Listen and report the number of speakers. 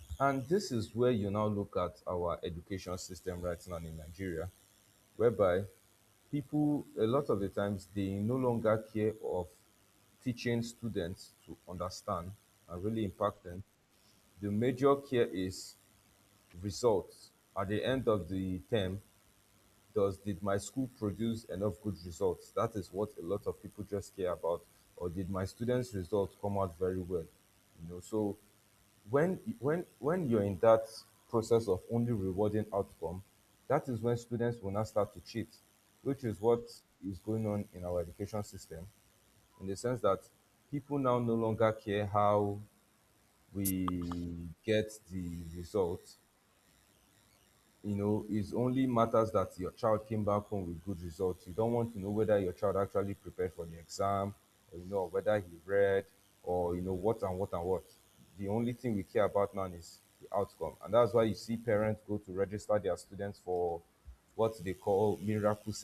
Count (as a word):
one